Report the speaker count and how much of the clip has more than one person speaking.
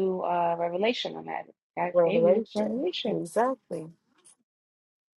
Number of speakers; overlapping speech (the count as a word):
two, about 17%